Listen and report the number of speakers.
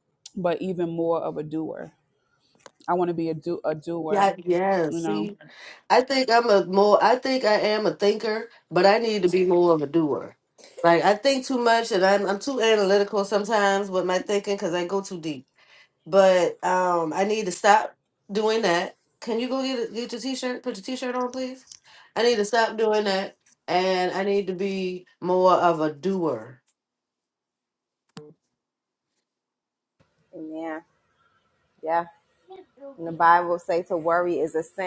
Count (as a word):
three